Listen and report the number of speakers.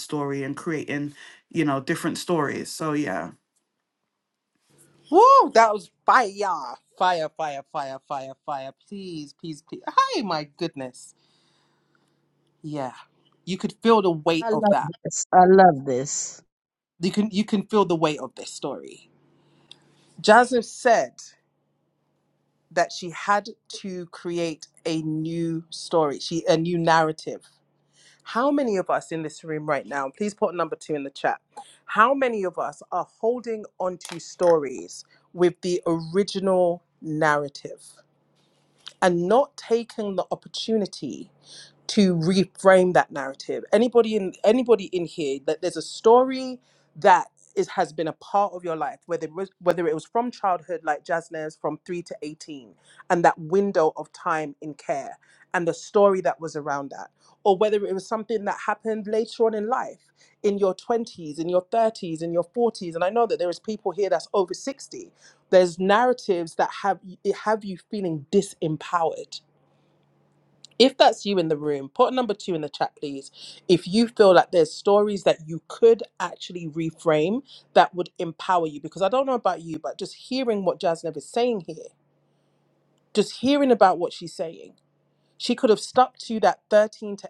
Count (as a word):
three